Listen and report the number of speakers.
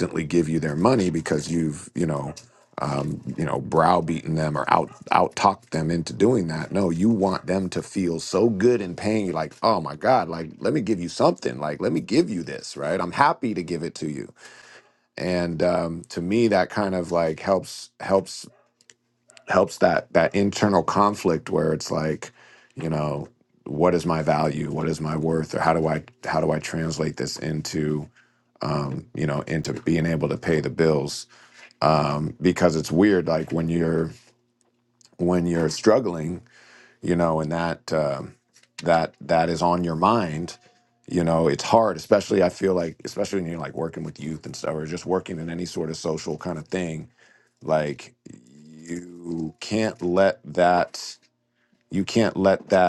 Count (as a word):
one